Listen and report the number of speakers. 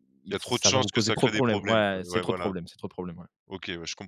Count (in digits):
2